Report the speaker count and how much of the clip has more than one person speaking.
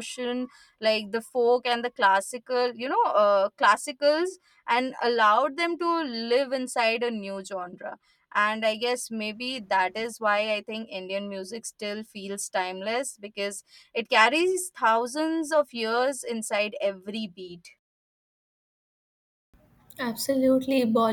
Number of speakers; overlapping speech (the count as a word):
two, no overlap